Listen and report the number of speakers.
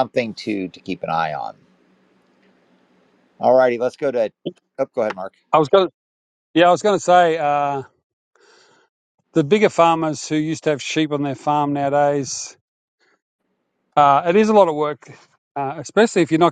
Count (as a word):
two